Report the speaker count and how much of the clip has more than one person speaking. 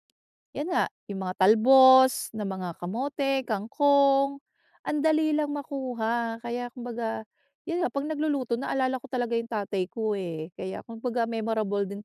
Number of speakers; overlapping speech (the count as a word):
one, no overlap